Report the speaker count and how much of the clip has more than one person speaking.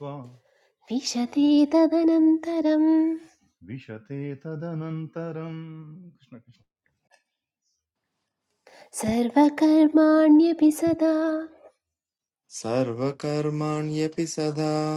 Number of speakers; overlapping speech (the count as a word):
three, no overlap